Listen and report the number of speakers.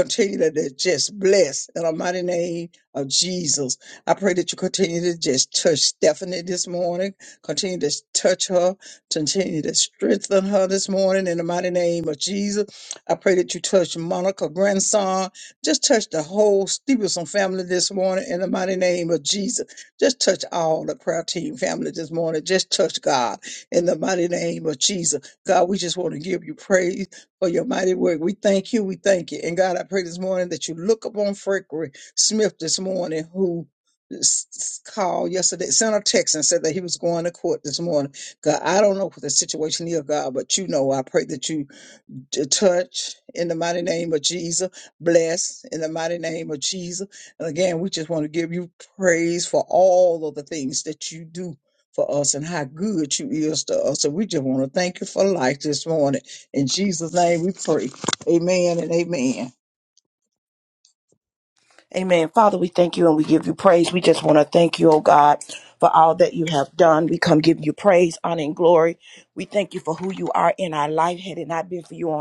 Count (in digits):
2